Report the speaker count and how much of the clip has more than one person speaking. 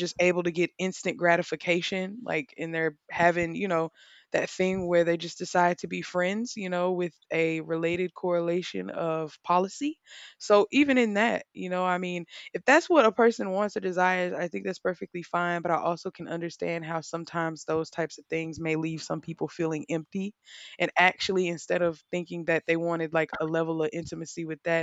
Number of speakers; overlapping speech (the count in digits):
1, no overlap